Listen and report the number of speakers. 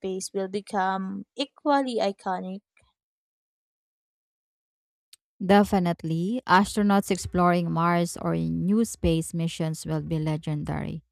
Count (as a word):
two